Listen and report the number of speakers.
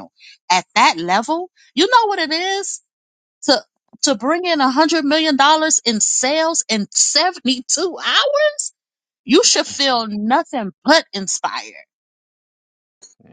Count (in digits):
1